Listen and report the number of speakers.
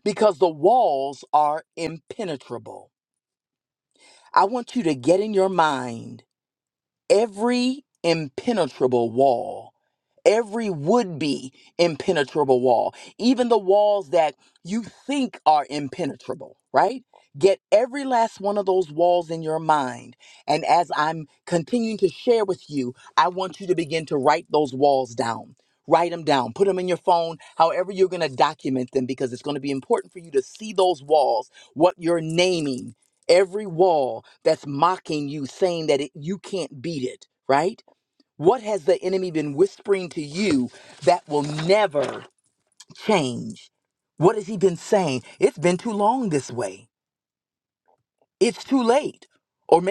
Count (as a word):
one